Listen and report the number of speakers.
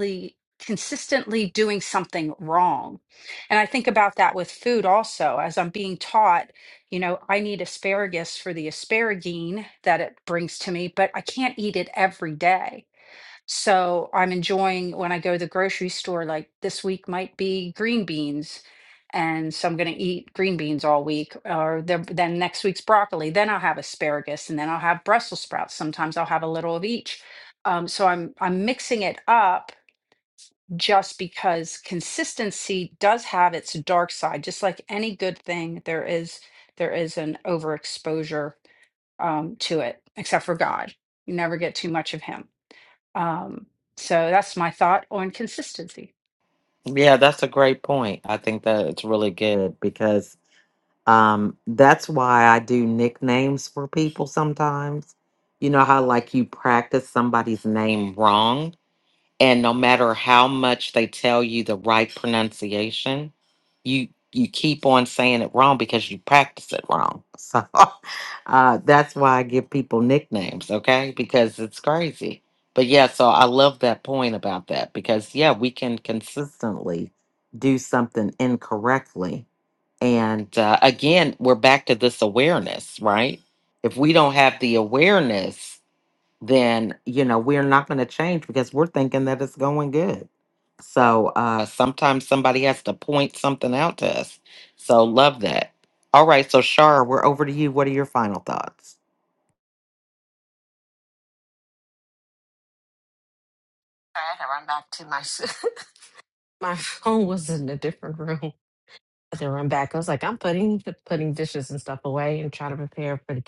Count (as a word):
three